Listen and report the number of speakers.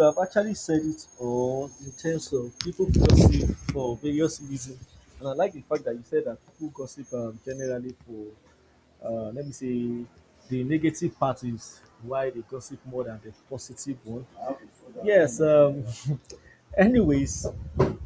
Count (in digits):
1